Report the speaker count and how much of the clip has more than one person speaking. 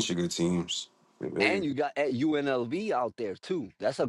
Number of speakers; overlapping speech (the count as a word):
two, about 5%